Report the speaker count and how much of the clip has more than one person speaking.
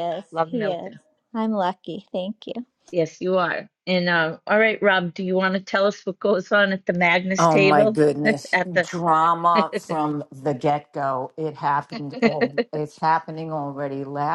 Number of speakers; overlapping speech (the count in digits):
3, about 10%